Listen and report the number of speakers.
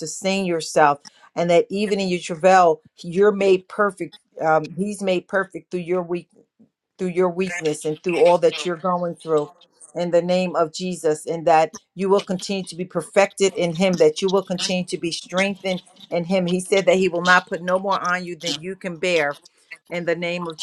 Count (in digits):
1